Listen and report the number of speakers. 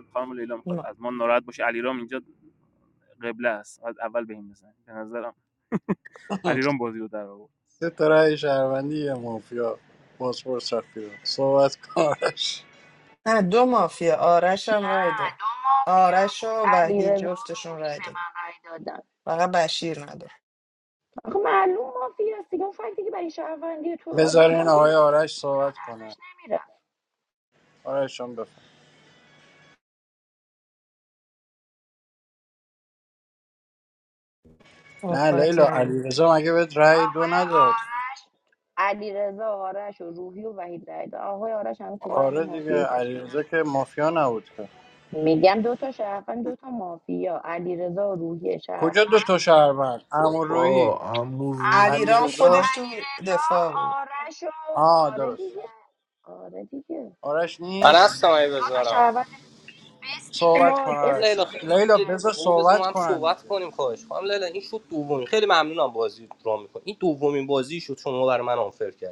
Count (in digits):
6